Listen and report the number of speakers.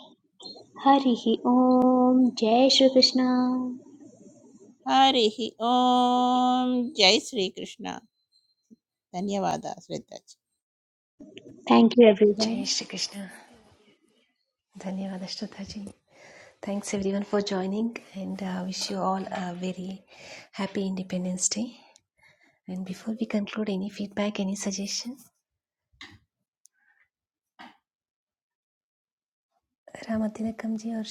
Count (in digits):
3